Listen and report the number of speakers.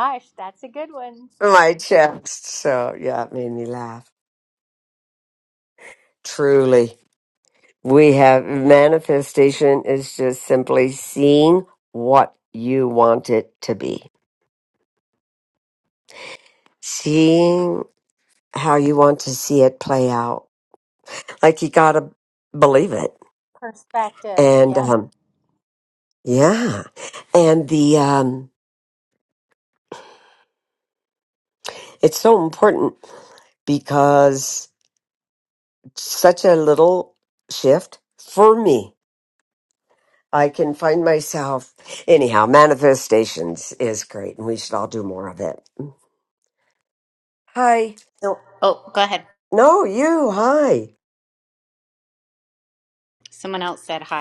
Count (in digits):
3